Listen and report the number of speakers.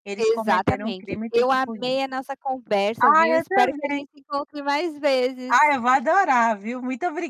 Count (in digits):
2